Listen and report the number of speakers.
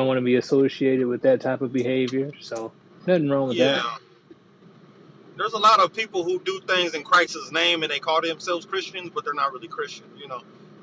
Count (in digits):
2